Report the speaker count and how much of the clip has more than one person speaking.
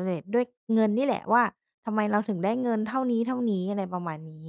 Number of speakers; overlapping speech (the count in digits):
1, no overlap